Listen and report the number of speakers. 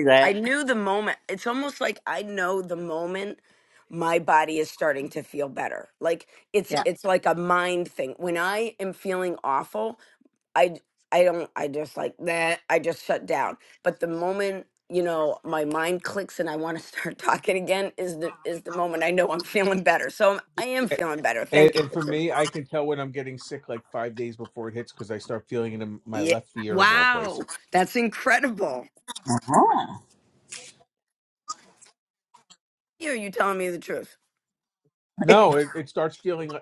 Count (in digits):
3